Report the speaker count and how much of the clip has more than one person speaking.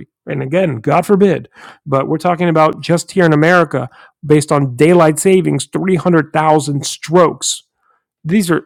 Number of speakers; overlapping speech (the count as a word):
one, no overlap